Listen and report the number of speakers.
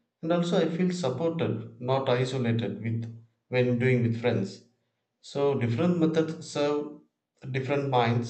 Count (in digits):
1